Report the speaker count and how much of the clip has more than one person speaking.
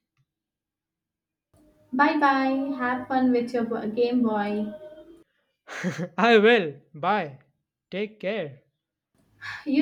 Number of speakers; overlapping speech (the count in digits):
2, no overlap